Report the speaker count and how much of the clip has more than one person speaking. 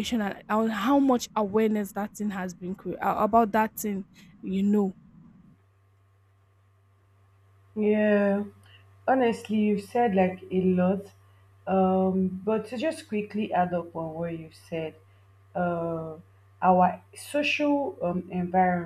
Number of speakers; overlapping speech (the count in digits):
2, no overlap